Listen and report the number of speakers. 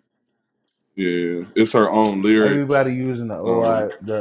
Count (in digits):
2